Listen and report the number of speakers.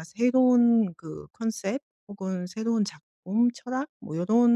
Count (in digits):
1